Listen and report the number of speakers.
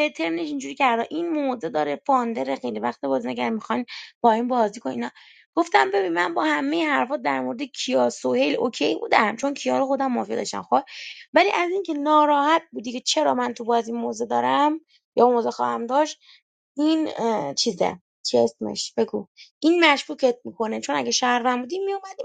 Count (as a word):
one